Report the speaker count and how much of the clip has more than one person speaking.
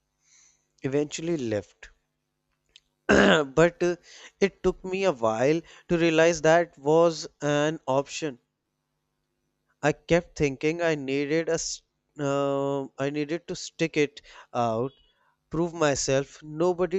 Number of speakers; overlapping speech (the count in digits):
1, no overlap